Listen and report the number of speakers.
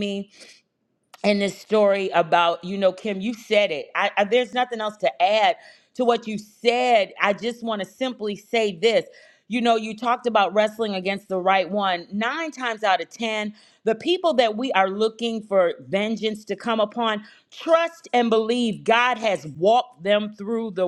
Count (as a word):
one